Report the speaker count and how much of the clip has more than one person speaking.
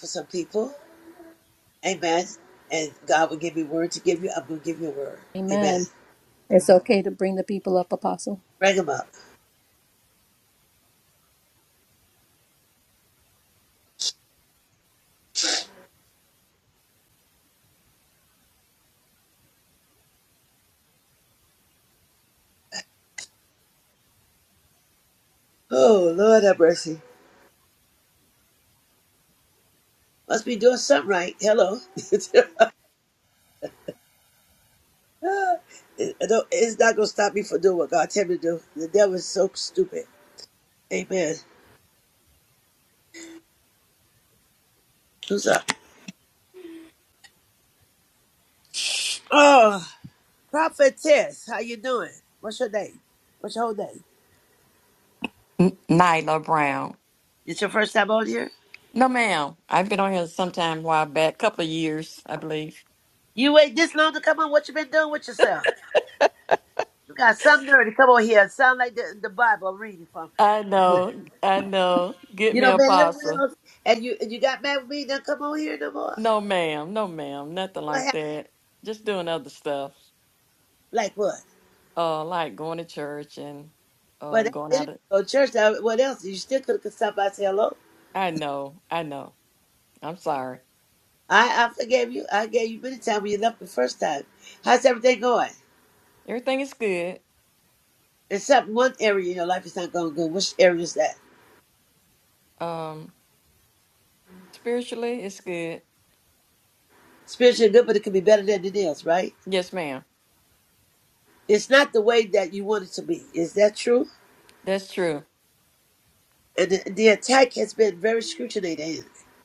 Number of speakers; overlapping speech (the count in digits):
3, about 2%